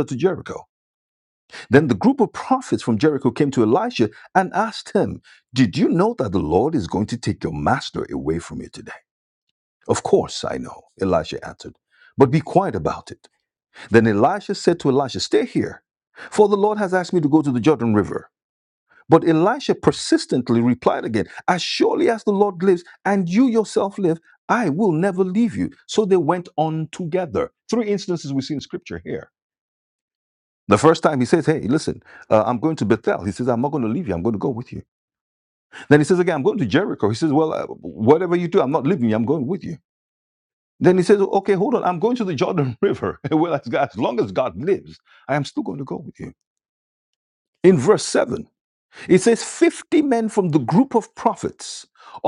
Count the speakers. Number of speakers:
one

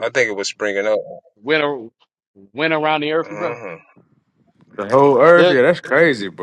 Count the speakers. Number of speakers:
three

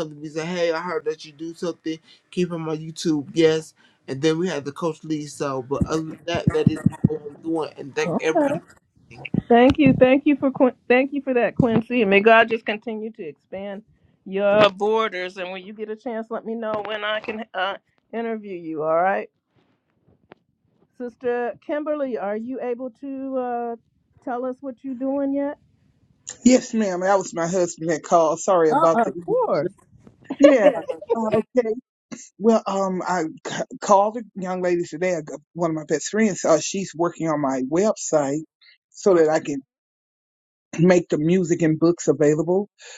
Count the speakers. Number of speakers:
three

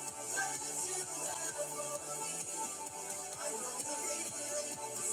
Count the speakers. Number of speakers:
zero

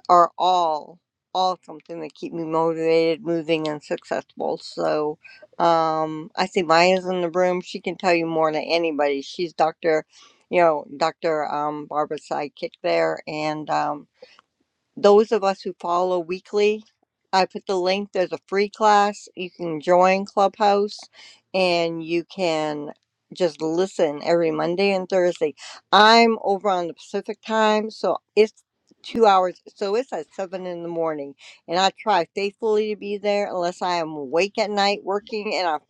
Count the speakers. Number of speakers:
one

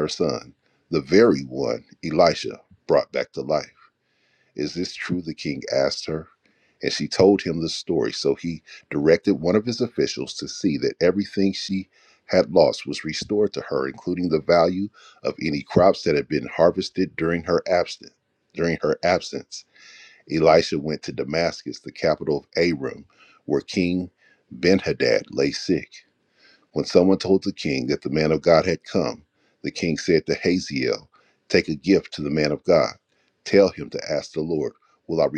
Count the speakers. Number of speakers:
one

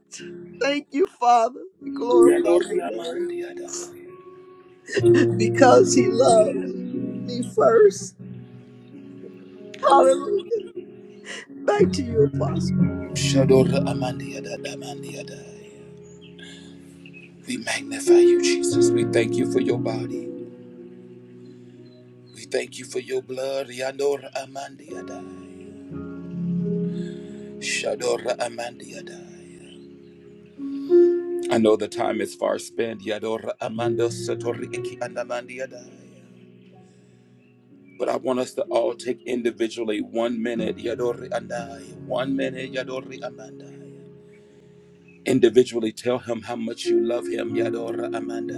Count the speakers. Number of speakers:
two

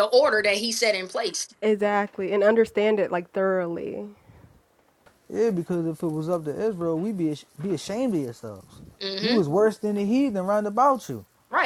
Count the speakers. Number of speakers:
three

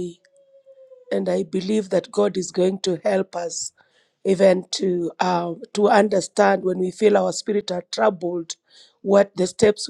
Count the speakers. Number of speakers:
one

